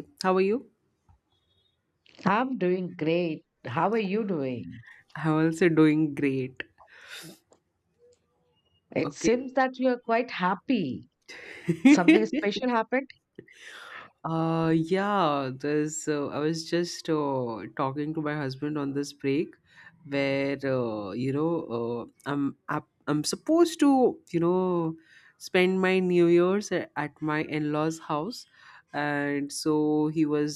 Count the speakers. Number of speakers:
two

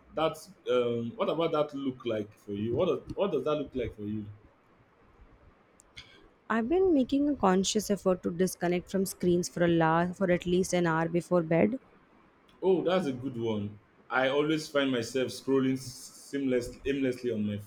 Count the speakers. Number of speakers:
two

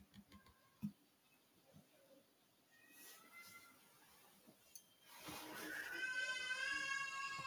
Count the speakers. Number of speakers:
zero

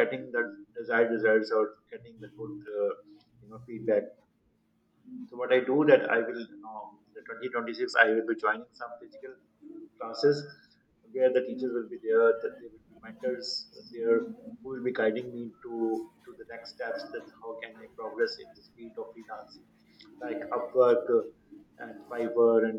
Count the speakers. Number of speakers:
one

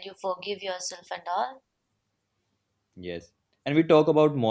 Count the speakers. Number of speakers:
two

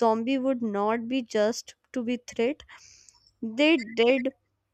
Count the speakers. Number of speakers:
one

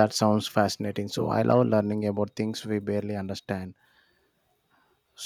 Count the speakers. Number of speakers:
one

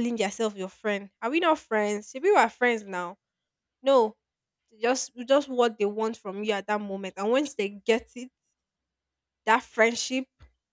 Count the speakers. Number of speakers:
one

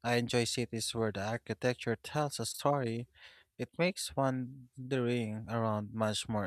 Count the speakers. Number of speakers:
one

